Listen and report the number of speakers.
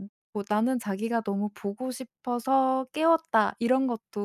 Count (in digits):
1